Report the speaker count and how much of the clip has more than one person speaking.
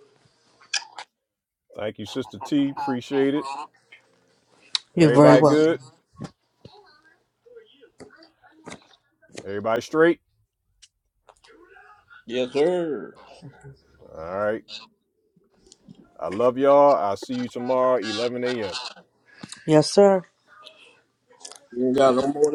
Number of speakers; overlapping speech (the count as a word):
three, about 3%